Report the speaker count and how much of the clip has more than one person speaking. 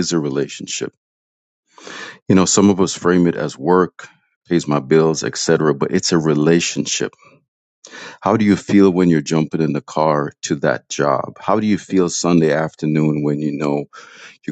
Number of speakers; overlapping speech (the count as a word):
one, no overlap